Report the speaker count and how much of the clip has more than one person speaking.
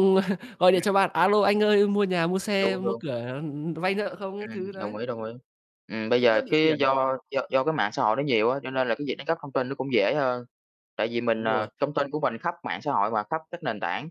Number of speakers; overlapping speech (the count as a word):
two, about 16%